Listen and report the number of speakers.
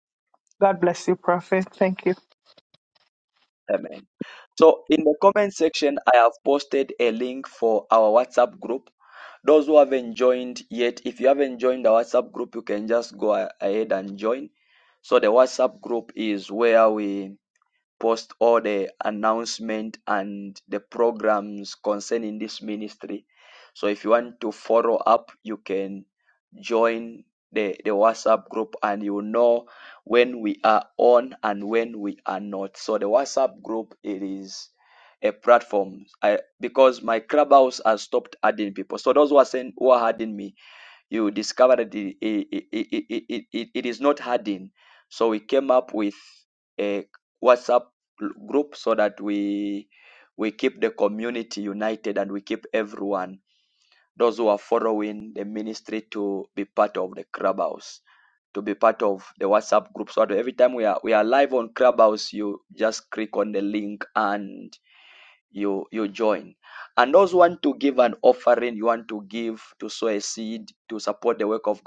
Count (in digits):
2